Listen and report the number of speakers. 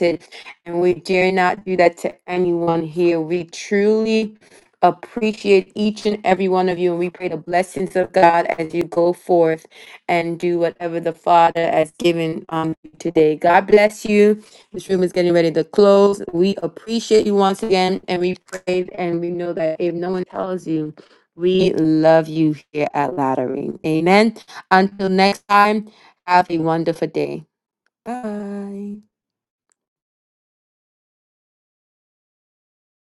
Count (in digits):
1